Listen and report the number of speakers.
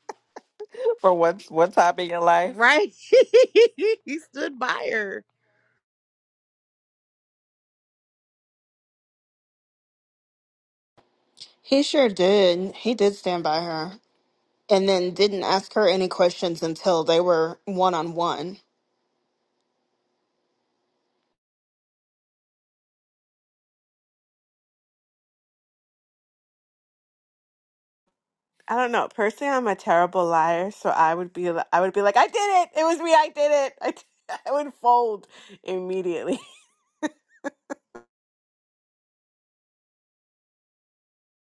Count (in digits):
4